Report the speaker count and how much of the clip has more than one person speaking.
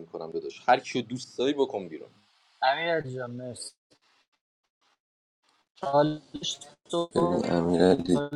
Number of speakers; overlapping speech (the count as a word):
three, about 1%